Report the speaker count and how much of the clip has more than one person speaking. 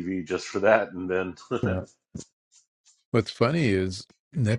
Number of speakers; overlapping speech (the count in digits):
2, no overlap